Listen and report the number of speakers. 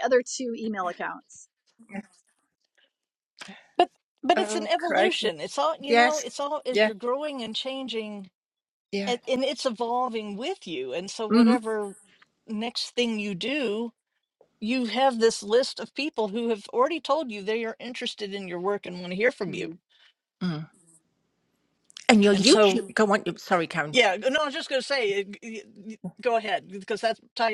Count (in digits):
3